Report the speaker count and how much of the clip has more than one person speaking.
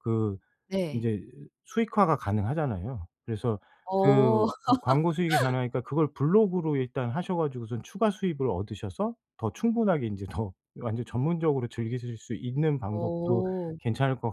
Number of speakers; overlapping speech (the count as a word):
two, about 8%